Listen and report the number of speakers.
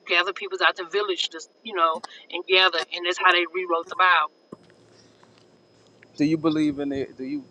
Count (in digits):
2